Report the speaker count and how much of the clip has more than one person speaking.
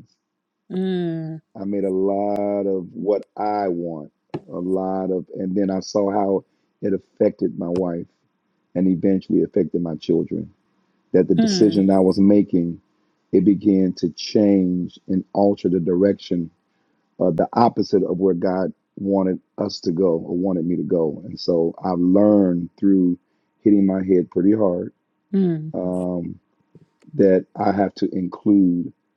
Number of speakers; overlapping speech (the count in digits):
2, about 2%